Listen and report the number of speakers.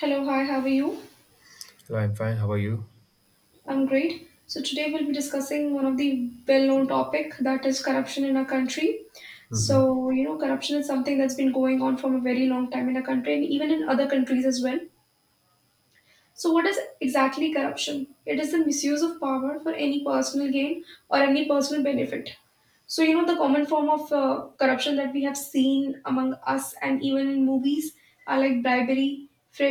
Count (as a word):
two